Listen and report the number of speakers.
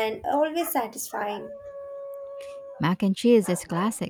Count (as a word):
two